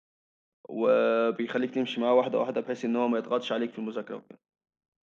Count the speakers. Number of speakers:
1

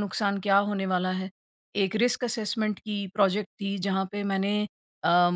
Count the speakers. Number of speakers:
1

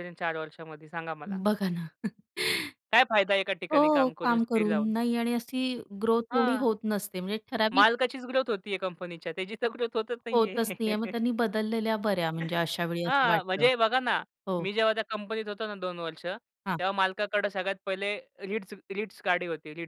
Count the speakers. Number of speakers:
2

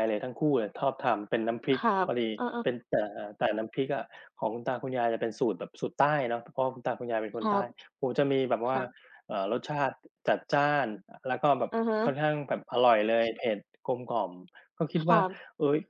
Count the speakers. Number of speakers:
2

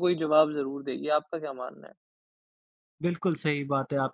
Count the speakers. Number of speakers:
2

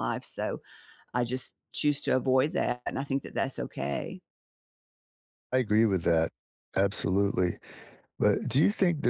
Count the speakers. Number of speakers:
2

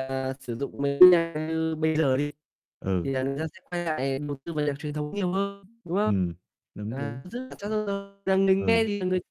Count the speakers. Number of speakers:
2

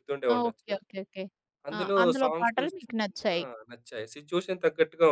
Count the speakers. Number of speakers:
2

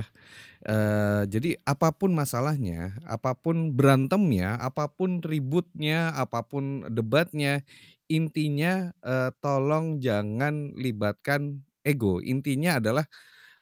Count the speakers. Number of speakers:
1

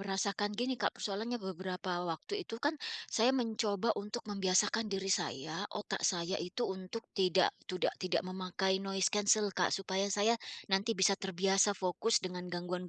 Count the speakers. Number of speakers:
1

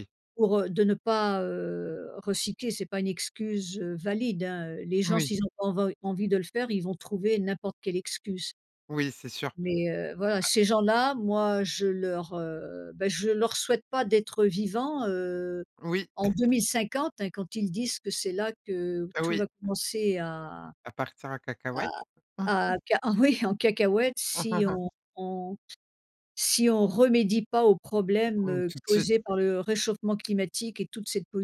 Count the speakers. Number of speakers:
2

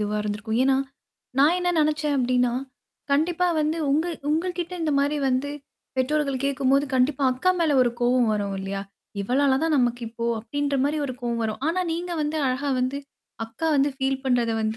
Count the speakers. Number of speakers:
1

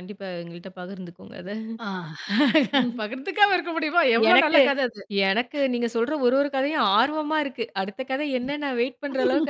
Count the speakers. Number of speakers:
2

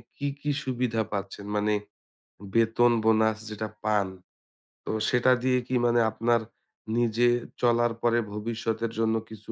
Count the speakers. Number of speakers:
1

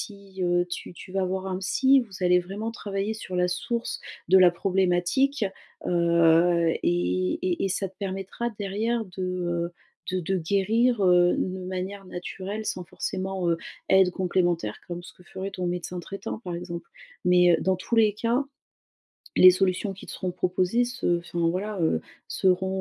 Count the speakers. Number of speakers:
1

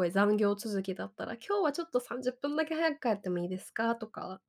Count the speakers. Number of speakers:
1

